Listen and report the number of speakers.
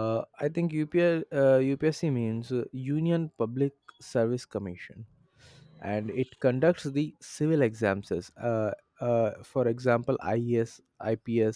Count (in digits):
1